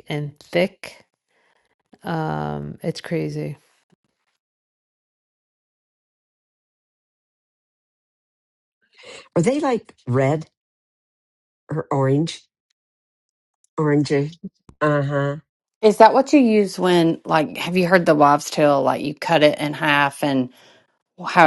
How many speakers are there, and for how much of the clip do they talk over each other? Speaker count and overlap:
3, no overlap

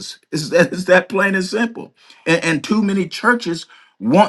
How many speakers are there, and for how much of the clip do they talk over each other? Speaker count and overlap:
1, no overlap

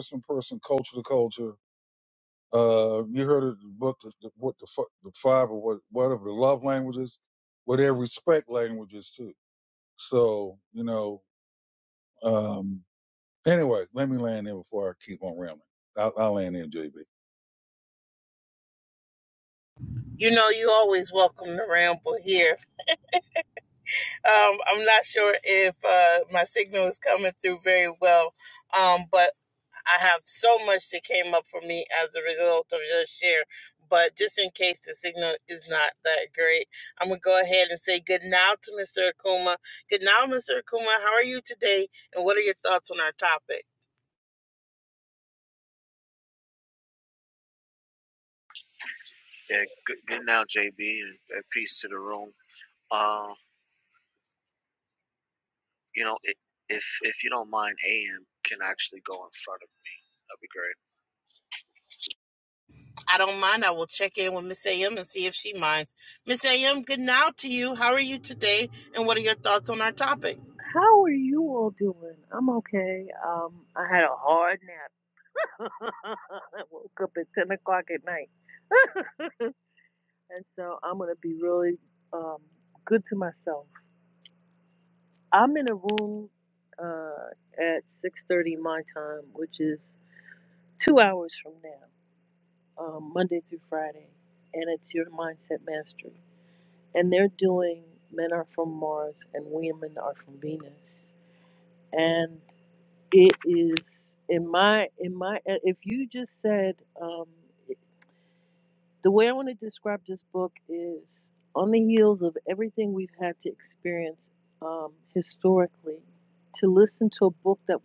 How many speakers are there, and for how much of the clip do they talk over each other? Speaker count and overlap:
4, no overlap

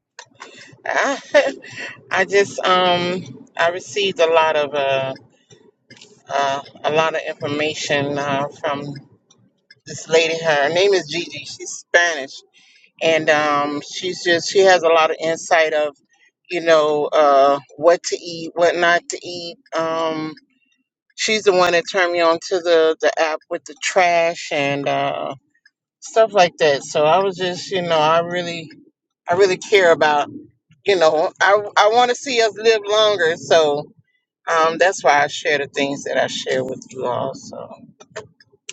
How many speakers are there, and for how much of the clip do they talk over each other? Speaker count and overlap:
1, no overlap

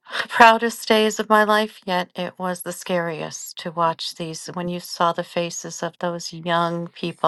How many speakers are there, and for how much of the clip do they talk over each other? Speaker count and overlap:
1, no overlap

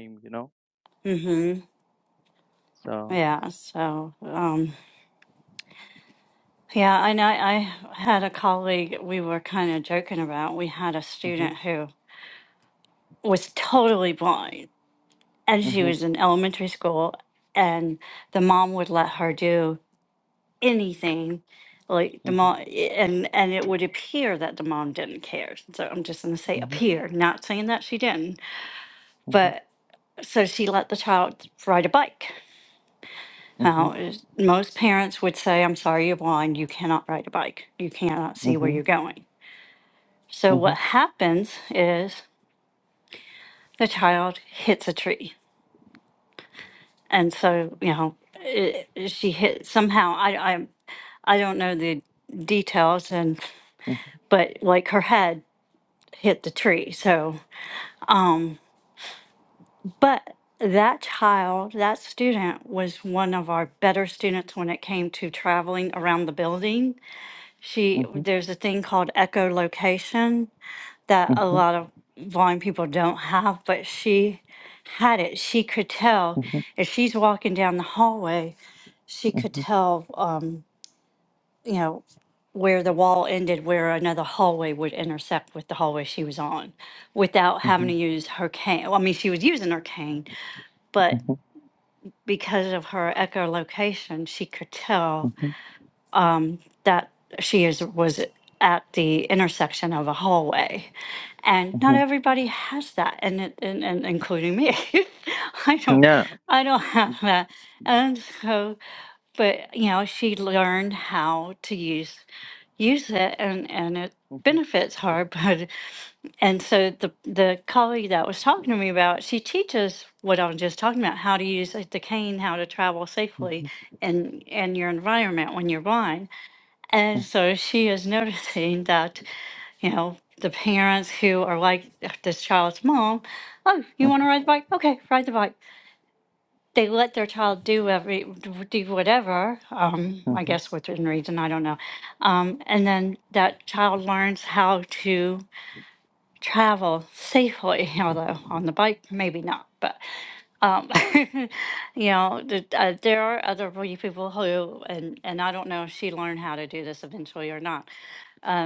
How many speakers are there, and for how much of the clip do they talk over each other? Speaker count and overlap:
2, about 3%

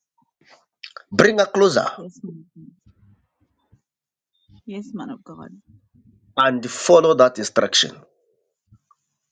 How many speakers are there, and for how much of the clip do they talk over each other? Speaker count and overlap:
2, no overlap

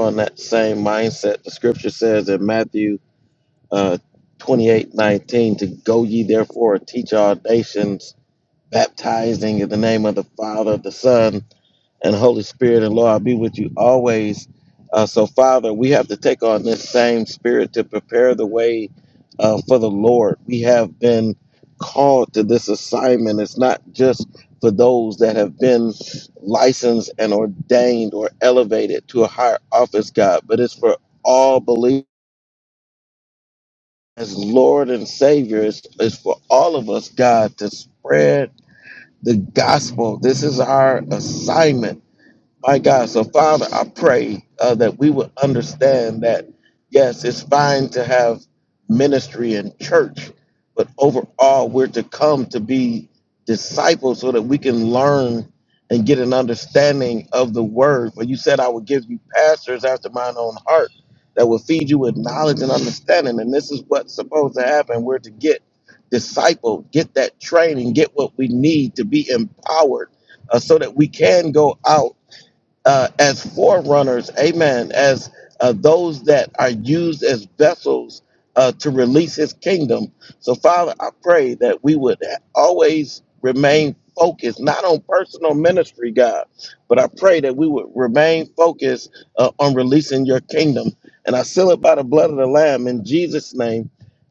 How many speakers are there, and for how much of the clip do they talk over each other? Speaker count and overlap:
1, no overlap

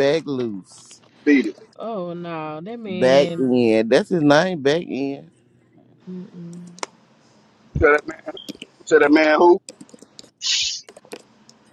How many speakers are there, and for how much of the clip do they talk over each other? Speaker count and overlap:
3, about 5%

